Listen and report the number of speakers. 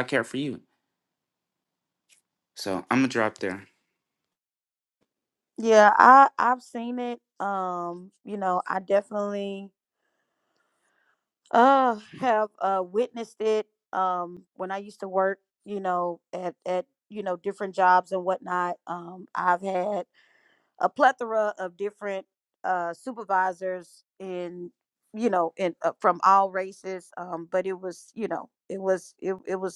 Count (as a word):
two